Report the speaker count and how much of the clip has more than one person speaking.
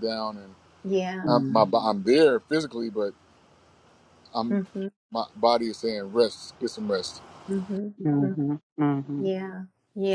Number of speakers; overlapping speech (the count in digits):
3, about 9%